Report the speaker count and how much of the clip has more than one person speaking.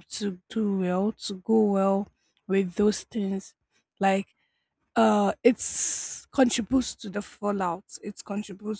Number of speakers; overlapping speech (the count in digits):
1, no overlap